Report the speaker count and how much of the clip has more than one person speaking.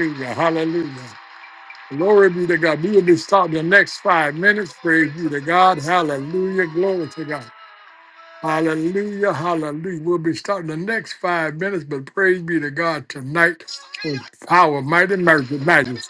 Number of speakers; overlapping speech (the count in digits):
1, no overlap